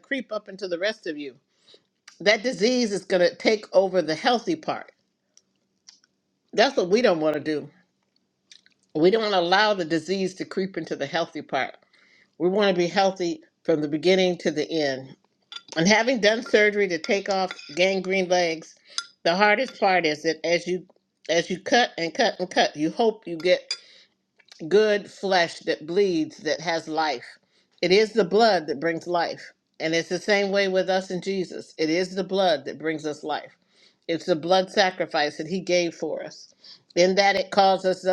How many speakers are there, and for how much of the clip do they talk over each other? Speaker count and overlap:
one, no overlap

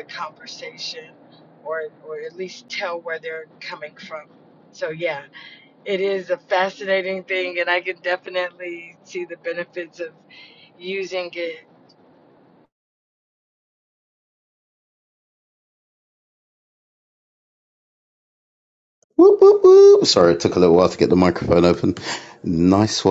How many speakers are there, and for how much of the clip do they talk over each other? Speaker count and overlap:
two, no overlap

